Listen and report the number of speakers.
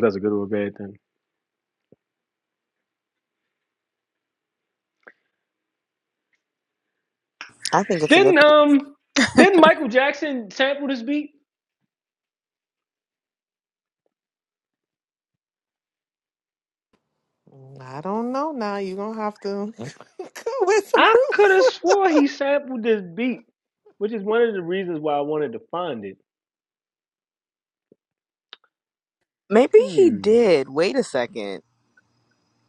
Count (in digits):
3